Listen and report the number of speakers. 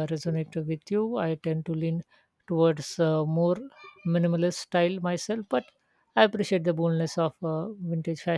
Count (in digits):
1